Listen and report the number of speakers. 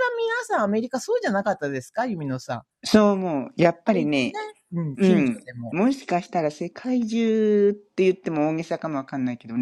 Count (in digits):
2